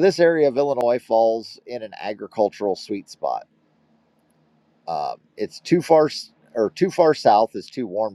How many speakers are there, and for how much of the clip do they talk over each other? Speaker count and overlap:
one, no overlap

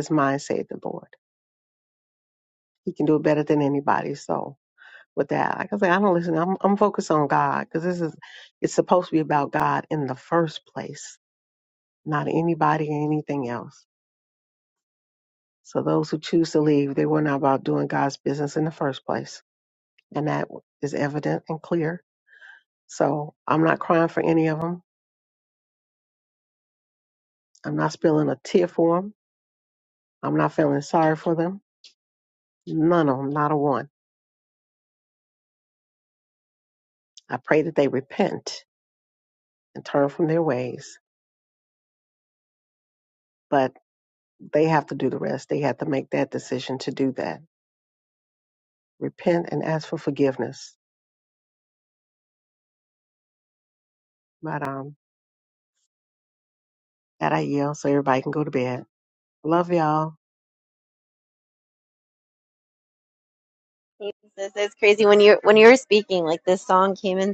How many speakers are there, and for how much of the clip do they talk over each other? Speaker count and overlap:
two, no overlap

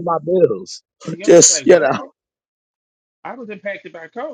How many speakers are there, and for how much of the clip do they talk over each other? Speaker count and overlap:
two, about 16%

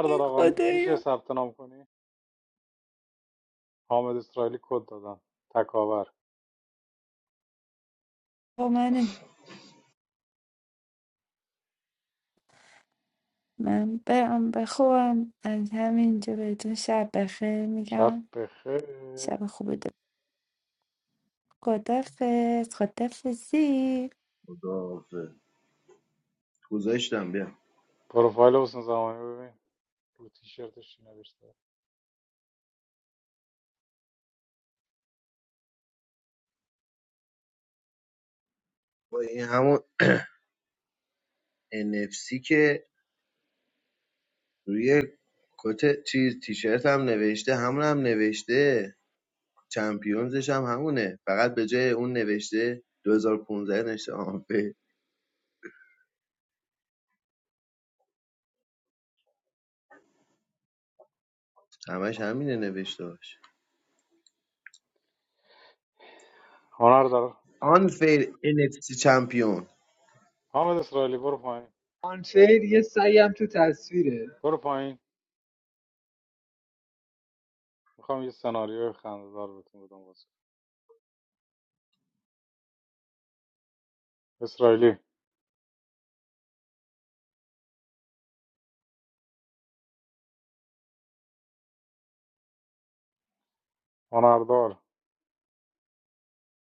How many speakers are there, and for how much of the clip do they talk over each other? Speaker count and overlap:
four, about 1%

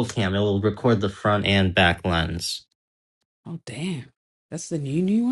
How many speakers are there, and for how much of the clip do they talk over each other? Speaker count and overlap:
two, no overlap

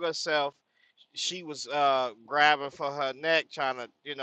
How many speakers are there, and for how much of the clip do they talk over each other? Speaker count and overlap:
one, no overlap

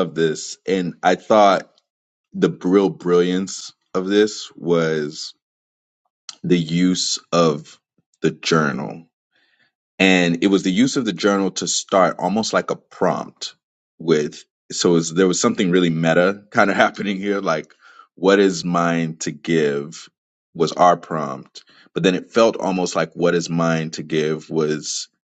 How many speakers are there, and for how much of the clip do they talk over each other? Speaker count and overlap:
one, no overlap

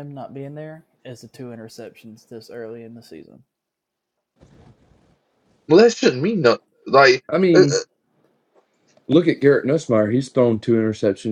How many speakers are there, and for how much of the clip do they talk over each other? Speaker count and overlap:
three, about 1%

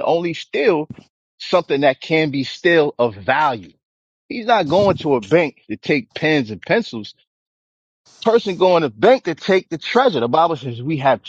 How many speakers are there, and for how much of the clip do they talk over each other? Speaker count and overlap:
one, no overlap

